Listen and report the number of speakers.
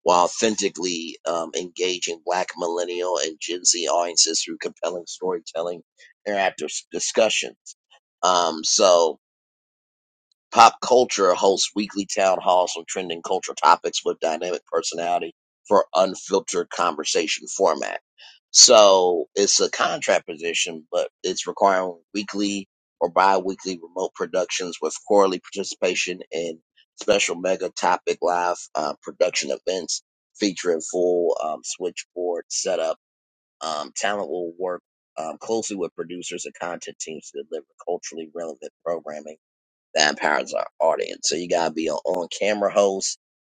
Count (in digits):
1